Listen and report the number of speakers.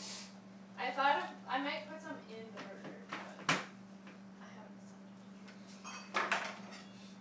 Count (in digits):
1